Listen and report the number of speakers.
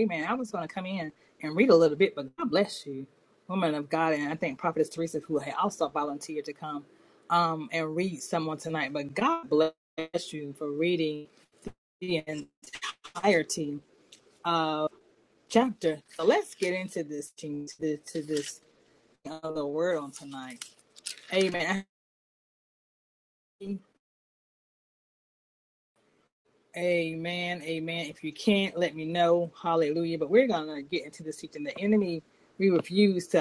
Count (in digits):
1